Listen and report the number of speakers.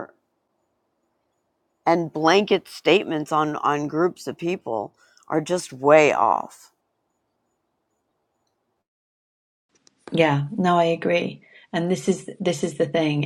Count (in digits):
2